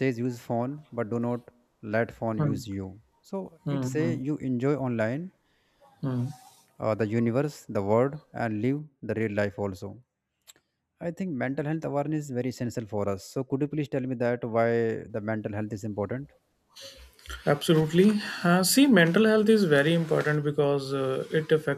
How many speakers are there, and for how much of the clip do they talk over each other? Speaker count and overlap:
2, about 3%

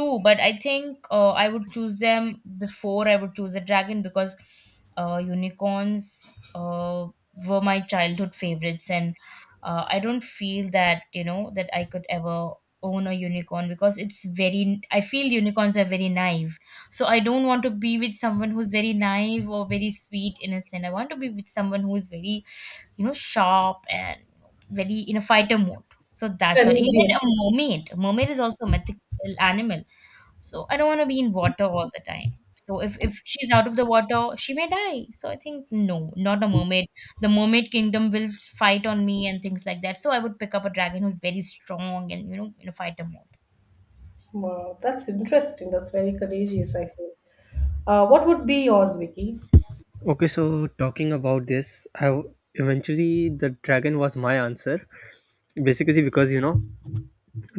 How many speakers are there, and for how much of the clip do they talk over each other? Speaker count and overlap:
3, about 1%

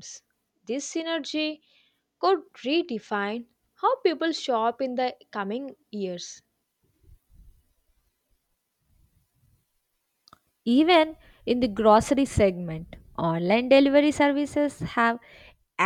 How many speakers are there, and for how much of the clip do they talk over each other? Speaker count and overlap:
2, no overlap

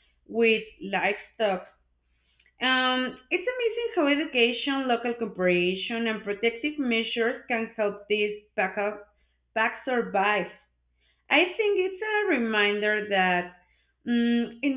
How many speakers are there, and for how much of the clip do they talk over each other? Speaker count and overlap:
1, no overlap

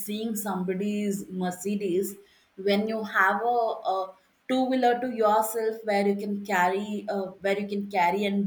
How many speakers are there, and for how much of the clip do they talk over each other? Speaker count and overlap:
1, no overlap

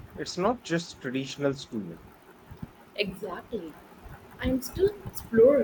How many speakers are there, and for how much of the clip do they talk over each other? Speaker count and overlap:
2, no overlap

